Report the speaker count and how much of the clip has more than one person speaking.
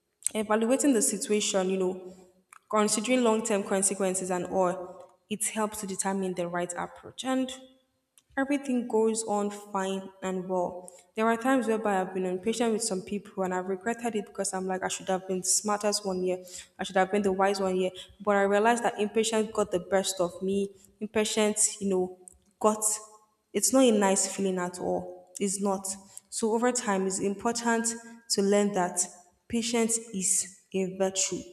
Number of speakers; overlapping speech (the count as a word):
one, no overlap